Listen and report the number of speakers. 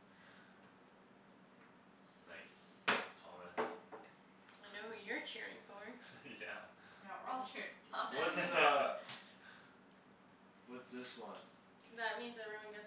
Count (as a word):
four